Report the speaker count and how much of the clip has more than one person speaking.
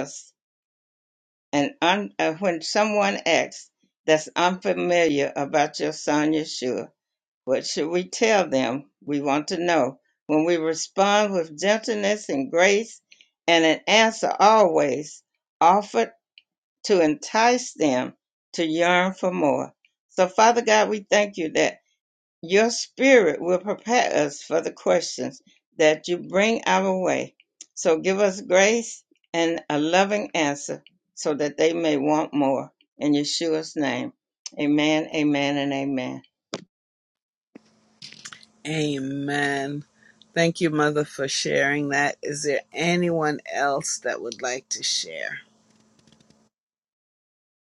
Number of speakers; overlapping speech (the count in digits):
2, no overlap